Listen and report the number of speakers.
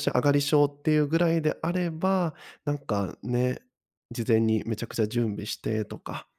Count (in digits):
1